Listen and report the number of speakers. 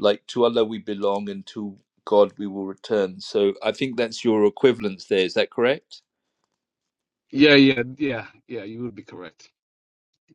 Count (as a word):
two